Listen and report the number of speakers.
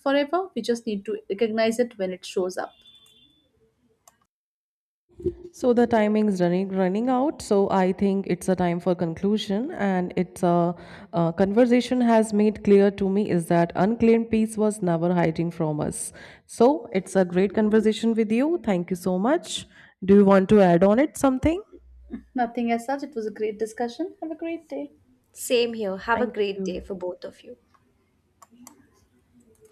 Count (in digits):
3